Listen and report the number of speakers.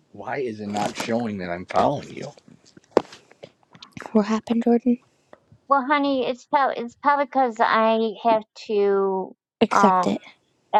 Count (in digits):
3